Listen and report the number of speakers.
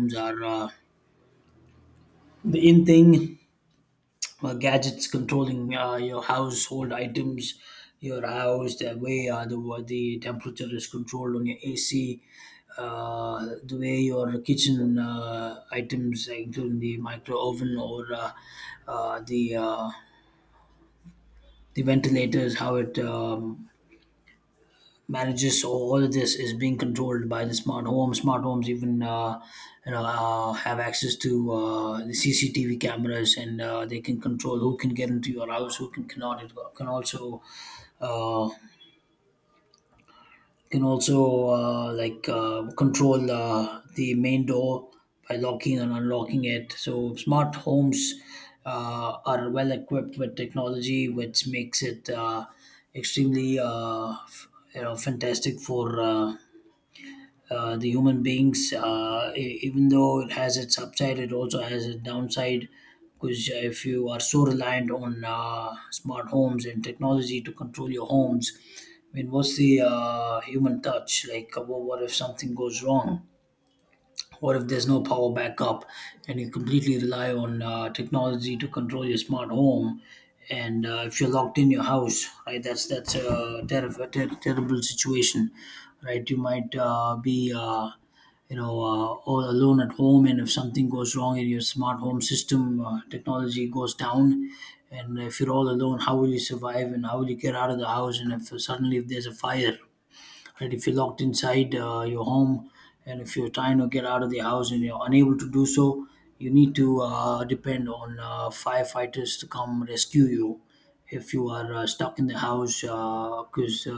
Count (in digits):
1